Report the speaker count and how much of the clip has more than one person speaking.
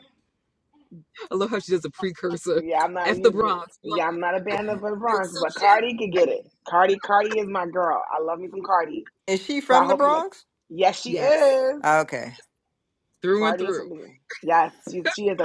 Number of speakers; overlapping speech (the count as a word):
three, about 20%